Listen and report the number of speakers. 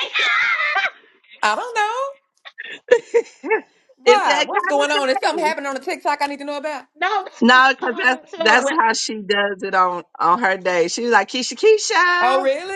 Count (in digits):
3